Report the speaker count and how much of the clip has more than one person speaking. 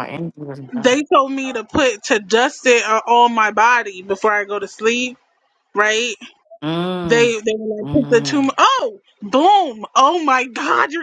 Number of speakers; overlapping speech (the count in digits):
2, about 9%